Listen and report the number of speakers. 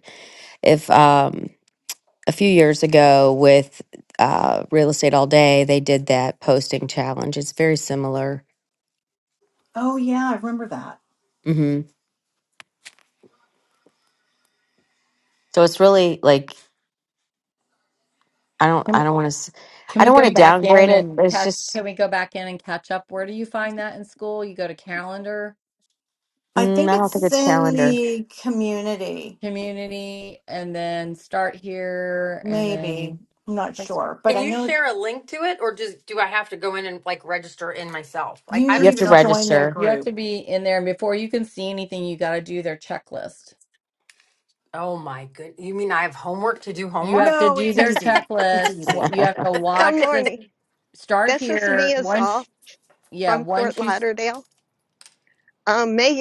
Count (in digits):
5